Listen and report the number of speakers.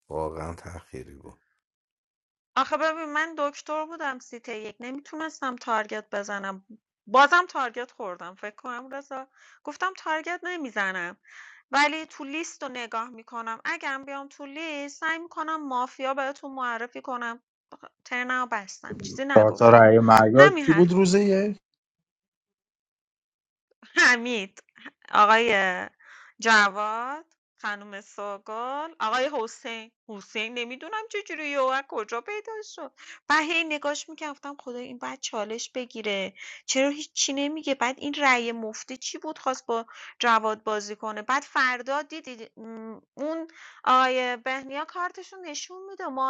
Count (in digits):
3